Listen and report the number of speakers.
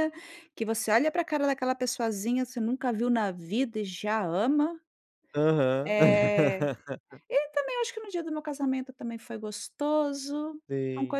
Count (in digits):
2